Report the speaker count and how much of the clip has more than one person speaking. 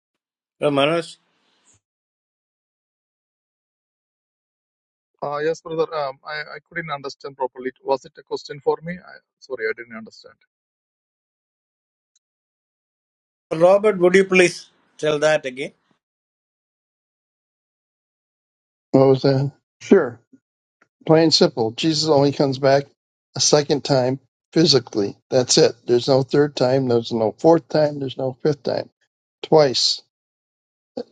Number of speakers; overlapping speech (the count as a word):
three, no overlap